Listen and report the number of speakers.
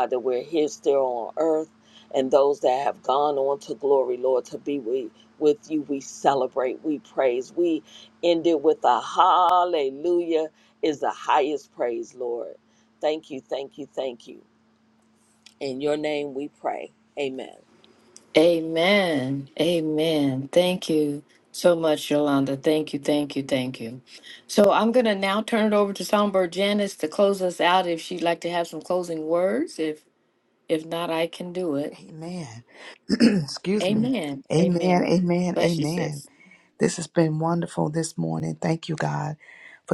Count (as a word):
three